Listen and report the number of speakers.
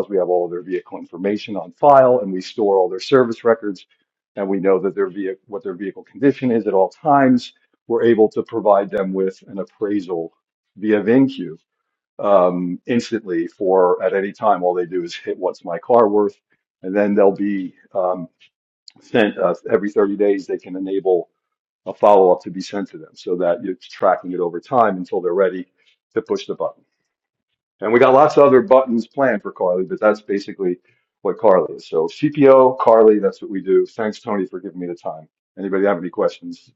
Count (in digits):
1